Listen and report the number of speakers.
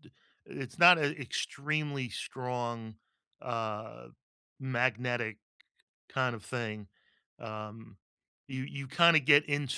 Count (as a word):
one